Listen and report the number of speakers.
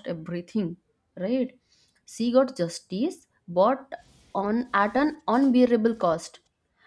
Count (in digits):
1